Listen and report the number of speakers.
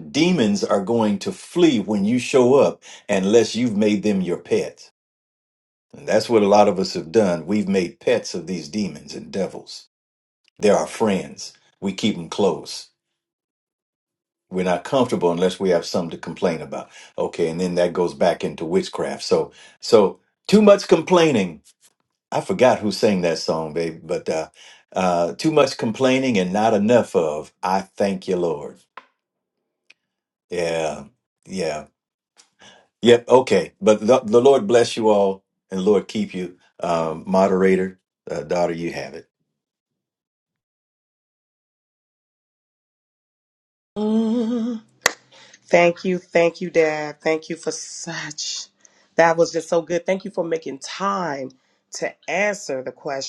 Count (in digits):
2